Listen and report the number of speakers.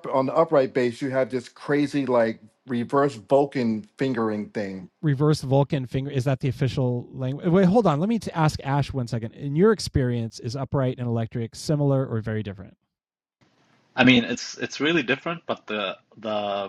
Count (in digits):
3